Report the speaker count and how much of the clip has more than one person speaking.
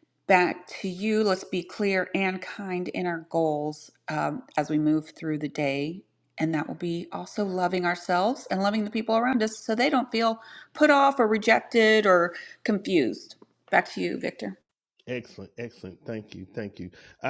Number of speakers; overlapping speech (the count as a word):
two, no overlap